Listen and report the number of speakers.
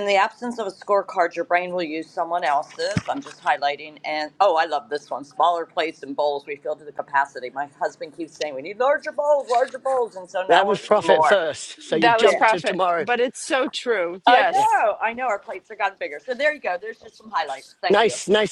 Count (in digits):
3